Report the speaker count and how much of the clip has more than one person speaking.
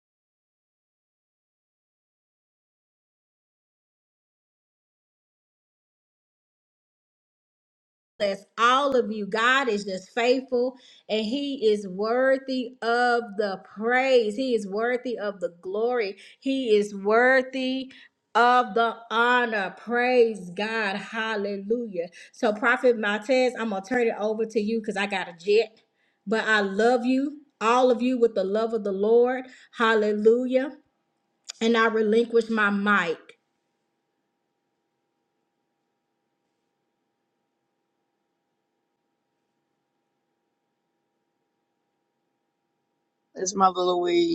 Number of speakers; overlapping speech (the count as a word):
two, no overlap